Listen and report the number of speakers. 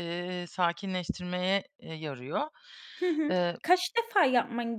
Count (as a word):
two